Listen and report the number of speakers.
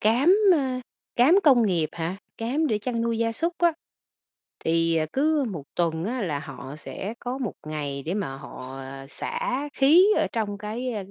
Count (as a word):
one